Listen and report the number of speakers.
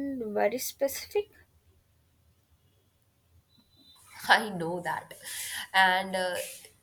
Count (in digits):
2